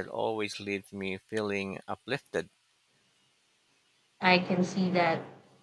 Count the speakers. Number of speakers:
two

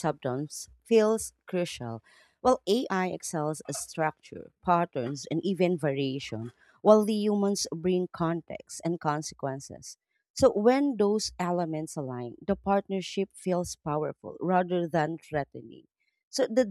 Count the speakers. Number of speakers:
one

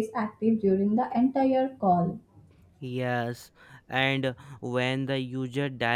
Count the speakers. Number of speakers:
two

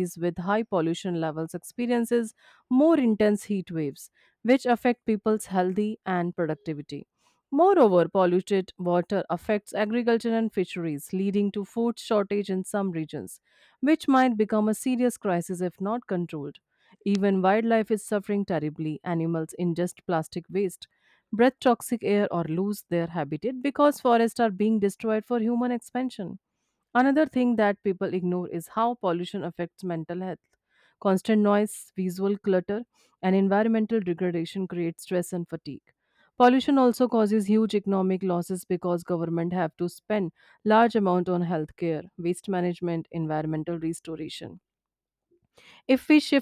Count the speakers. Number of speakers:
one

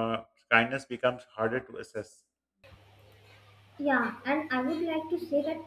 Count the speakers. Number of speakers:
two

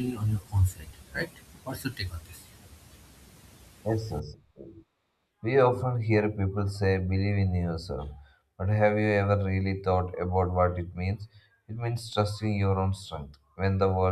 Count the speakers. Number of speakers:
two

